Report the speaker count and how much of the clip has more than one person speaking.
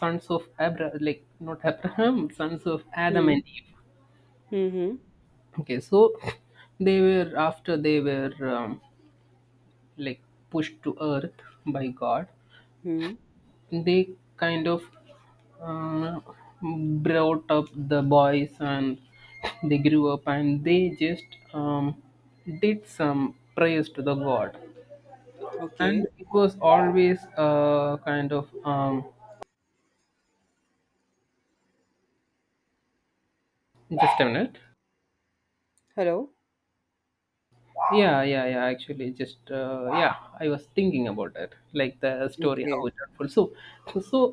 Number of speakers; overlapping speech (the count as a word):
two, about 3%